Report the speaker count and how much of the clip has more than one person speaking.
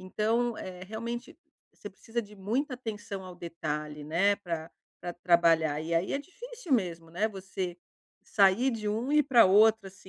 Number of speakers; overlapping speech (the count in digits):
1, no overlap